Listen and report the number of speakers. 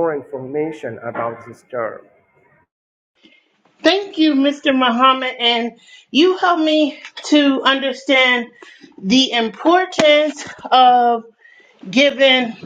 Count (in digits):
2